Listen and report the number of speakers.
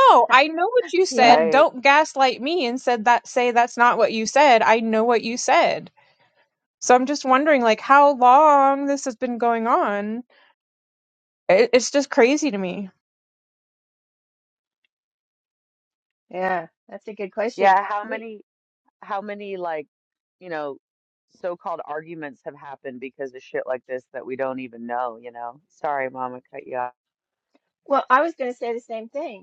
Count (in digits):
3